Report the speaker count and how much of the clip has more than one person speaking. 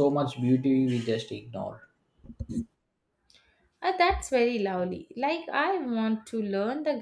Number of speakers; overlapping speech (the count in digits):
2, no overlap